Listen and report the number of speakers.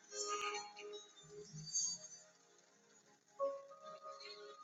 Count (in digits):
0